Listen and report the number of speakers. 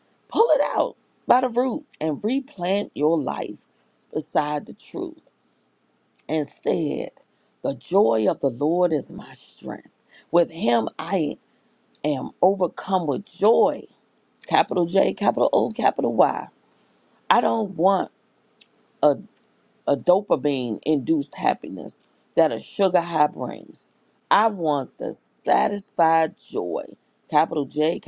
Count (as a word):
one